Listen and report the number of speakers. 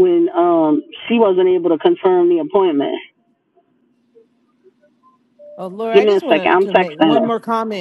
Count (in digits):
2